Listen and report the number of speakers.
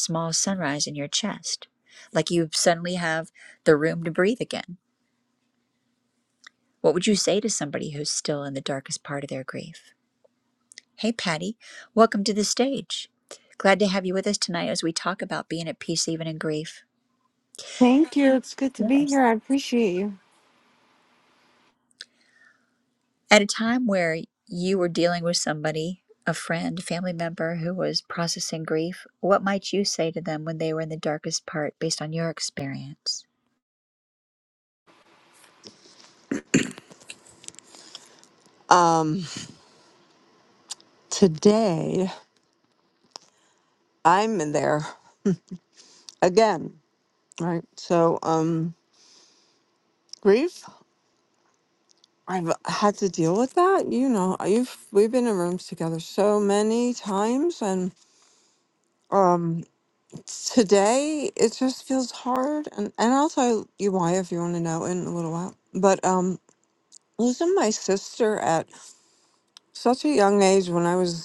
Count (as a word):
two